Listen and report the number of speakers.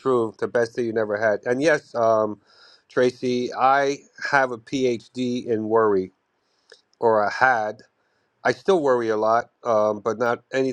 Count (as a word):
one